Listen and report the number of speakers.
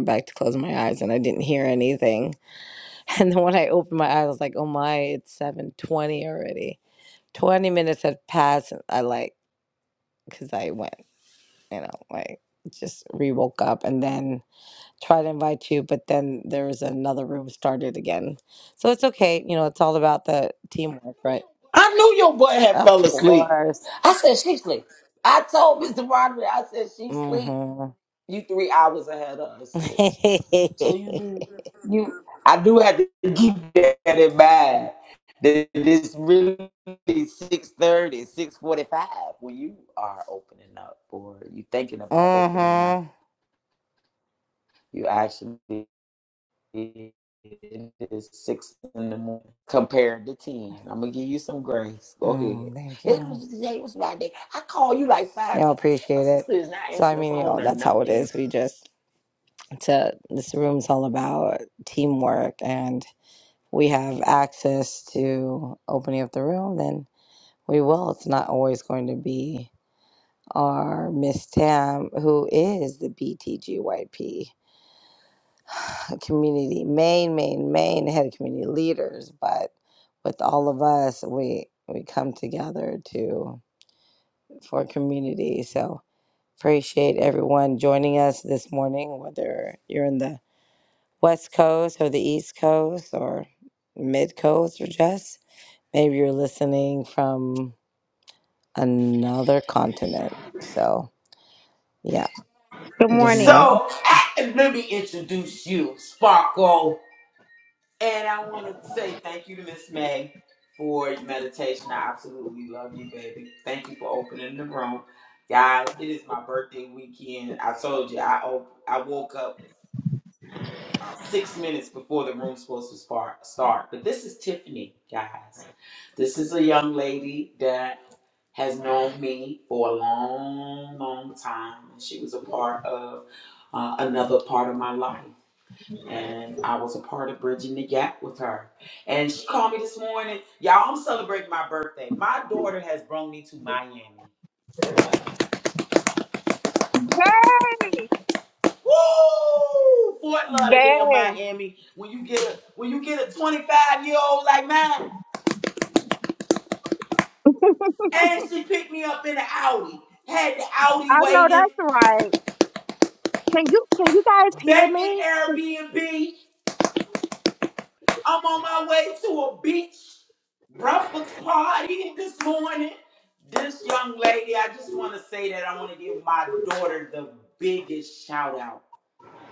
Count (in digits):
3